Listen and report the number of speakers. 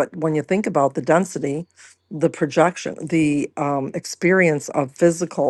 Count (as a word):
one